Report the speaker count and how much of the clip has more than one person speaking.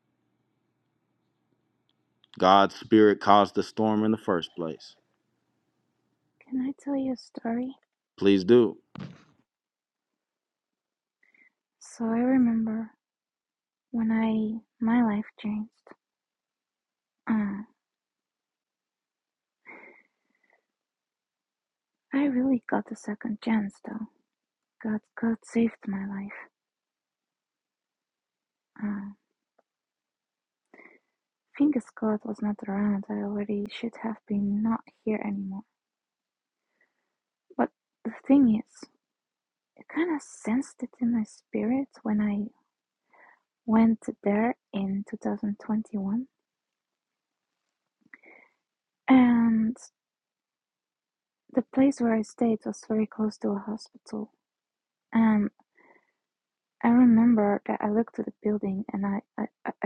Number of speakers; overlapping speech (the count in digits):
2, no overlap